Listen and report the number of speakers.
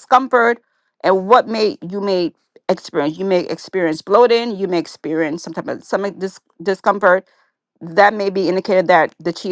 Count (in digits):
1